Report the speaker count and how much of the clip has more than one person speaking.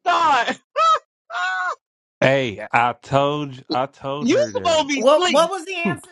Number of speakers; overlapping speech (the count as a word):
three, about 18%